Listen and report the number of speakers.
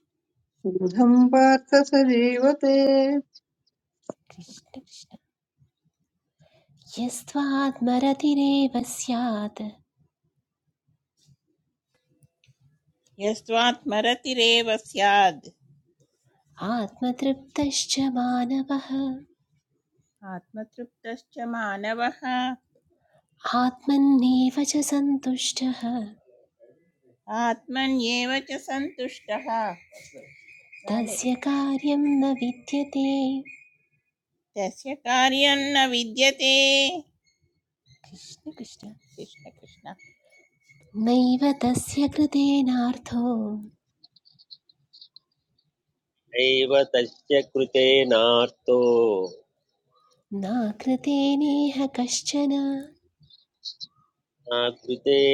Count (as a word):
four